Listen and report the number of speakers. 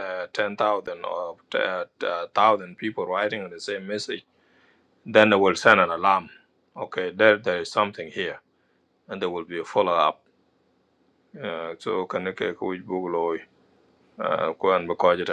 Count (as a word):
one